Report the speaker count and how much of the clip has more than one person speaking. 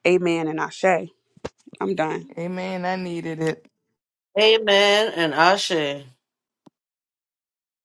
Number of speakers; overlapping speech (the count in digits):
3, no overlap